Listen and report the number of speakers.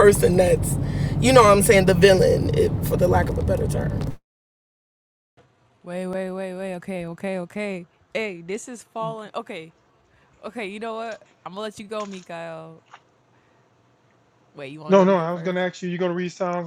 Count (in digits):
3